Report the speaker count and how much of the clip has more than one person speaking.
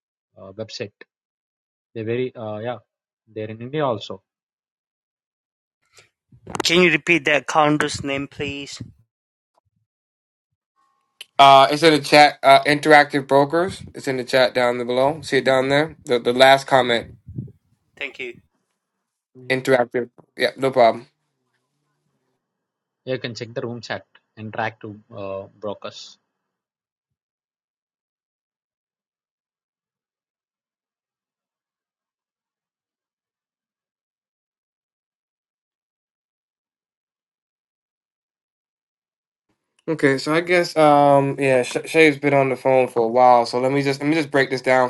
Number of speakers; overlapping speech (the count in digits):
3, no overlap